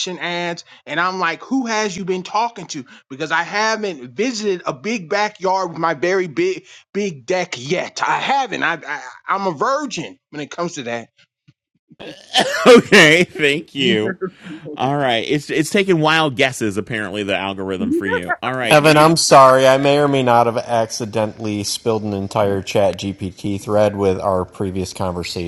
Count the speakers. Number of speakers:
3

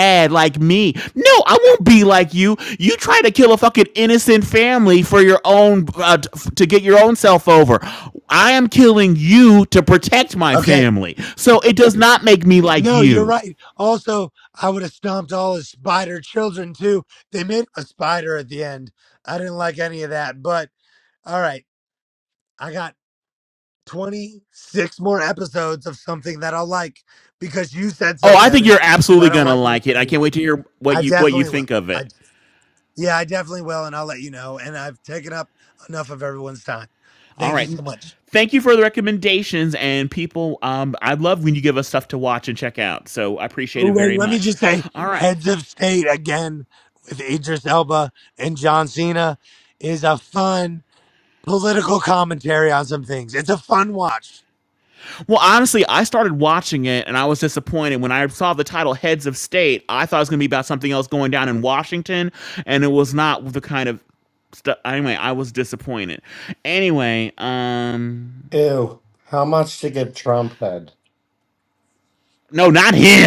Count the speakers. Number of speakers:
3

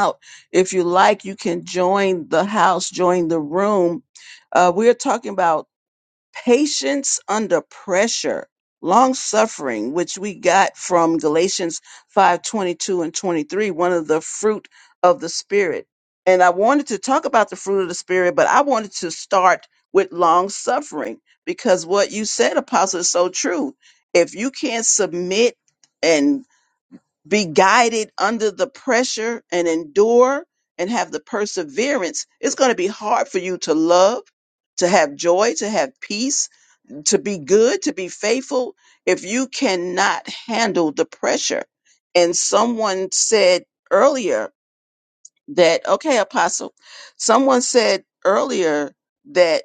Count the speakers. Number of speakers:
1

